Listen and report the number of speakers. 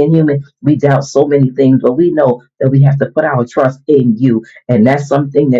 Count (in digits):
1